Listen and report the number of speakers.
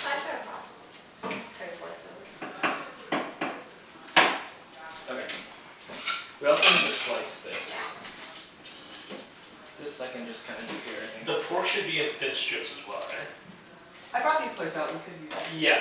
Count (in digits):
4